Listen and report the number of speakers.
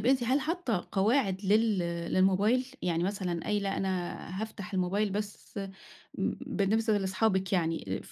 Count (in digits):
1